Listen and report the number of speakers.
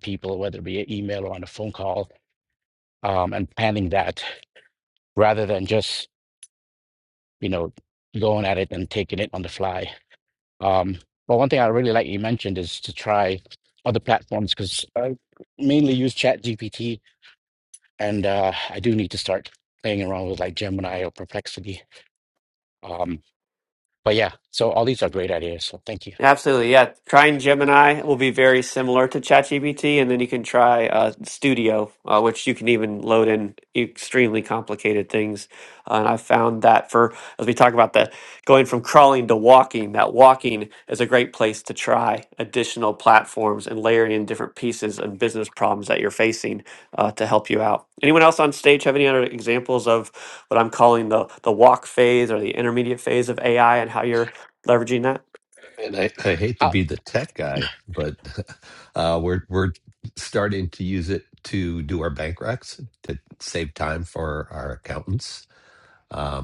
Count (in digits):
3